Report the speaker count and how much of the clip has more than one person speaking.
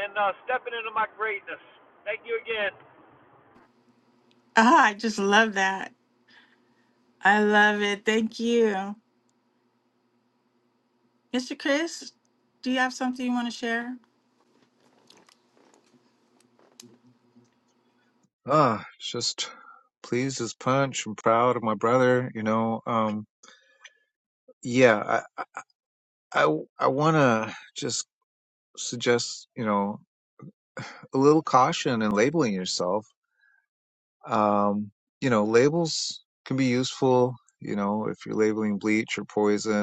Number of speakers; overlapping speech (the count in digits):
3, no overlap